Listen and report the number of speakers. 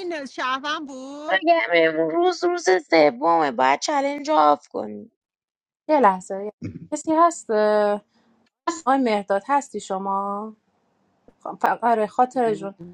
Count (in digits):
3